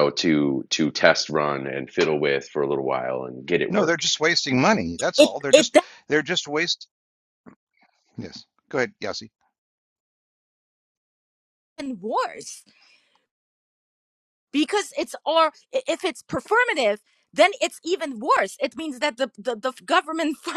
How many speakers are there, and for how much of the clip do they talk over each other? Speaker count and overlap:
3, about 4%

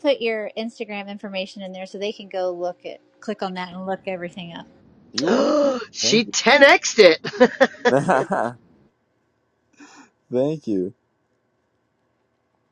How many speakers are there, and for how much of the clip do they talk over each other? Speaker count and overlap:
3, about 3%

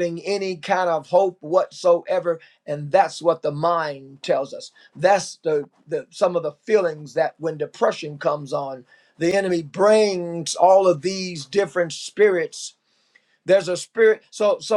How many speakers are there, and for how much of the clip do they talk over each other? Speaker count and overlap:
1, no overlap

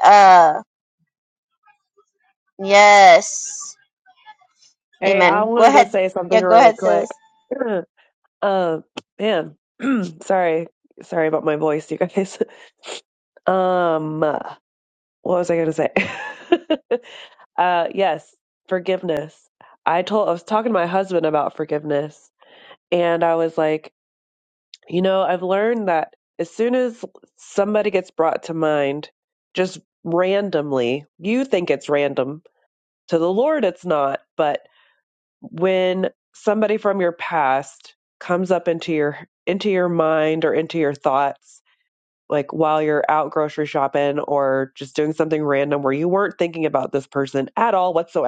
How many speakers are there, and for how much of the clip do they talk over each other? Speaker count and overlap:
2, about 3%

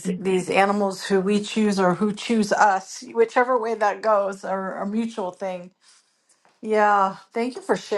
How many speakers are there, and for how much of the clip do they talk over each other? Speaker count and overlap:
1, no overlap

